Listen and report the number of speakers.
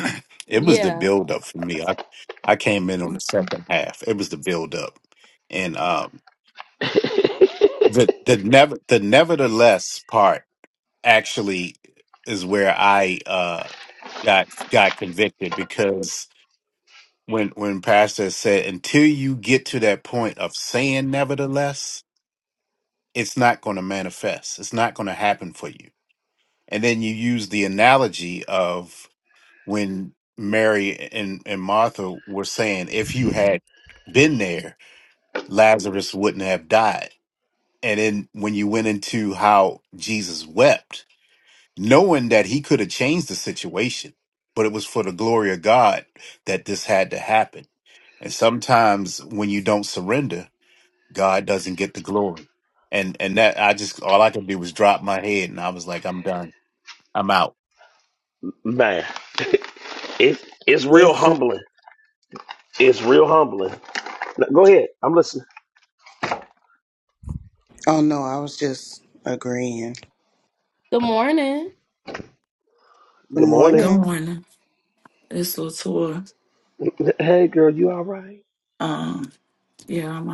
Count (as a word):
five